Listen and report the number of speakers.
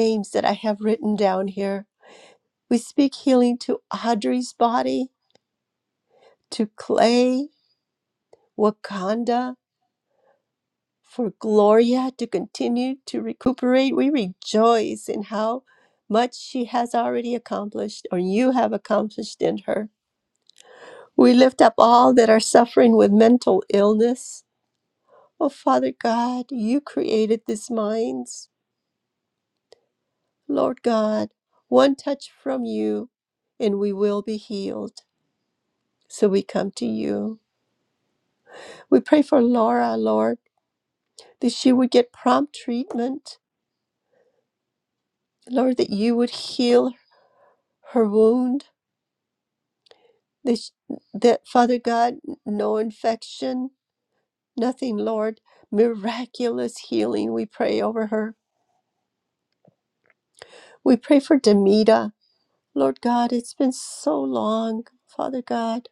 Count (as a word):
one